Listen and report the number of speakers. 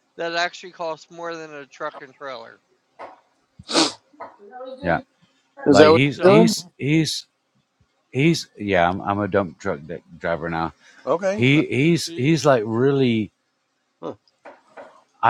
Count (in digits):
3